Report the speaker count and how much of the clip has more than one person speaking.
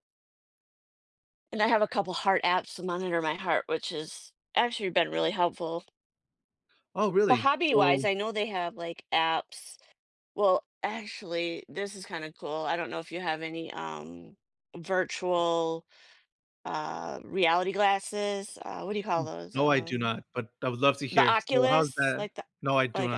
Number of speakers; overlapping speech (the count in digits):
2, about 11%